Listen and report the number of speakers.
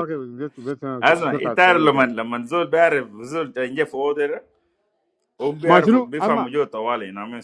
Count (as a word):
two